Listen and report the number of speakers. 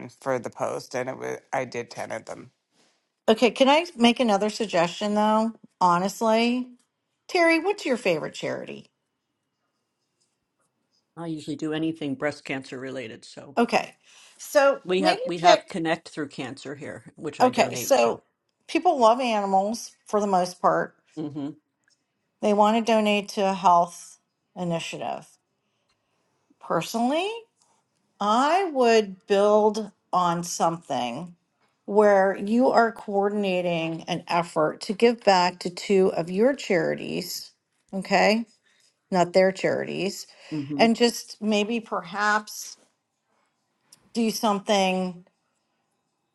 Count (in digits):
3